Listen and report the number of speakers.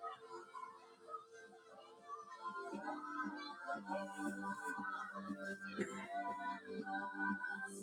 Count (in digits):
0